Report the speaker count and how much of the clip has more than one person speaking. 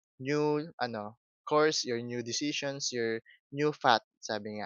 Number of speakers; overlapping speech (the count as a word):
one, no overlap